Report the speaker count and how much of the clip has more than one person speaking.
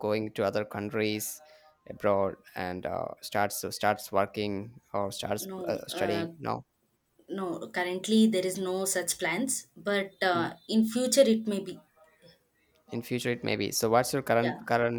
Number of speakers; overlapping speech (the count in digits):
2, about 9%